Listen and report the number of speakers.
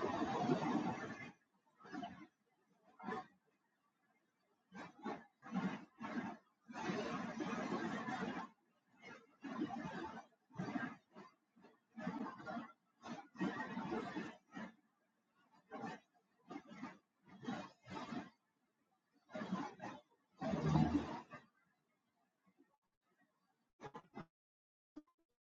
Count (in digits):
0